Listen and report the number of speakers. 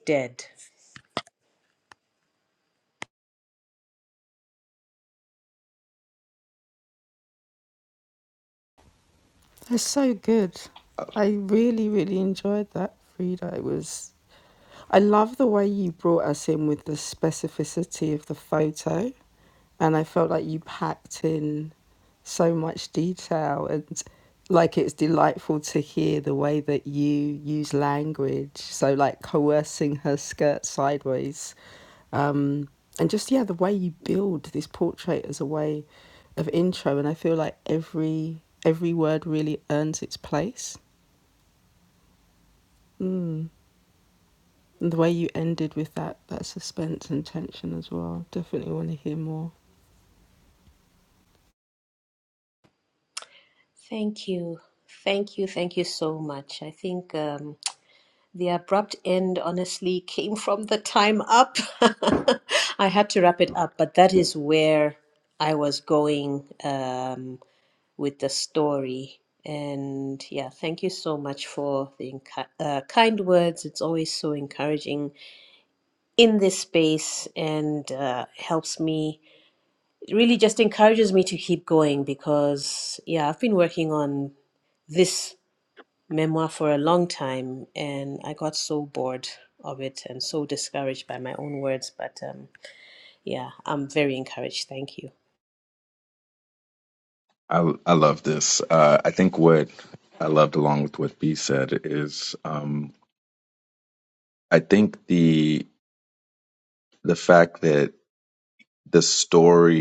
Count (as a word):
three